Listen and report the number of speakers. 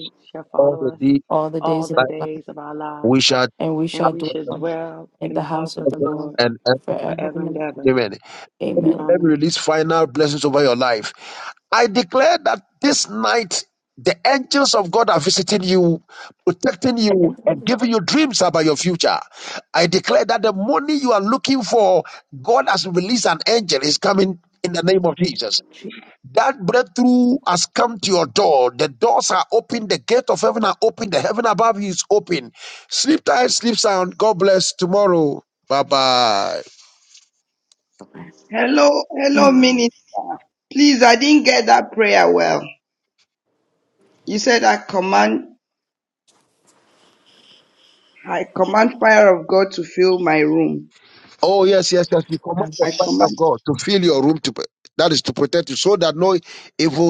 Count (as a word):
four